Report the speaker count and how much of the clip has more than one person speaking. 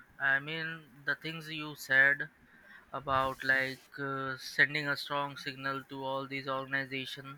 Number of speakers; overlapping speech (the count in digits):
1, no overlap